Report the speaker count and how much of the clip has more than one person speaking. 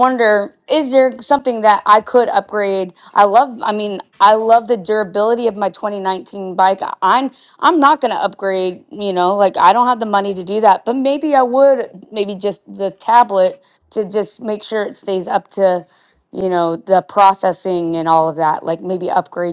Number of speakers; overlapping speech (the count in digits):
1, no overlap